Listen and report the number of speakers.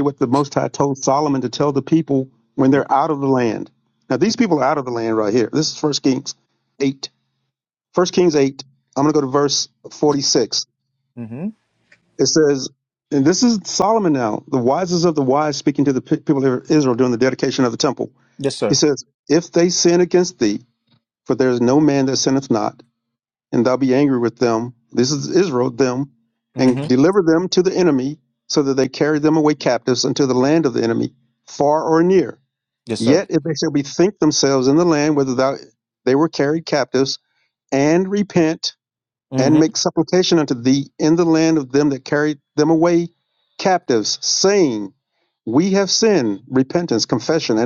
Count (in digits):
2